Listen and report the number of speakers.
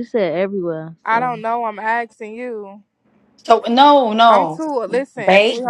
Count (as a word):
three